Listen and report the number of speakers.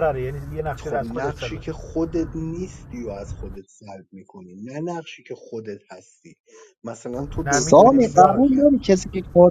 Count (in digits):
3